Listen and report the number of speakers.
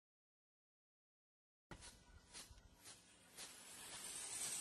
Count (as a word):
zero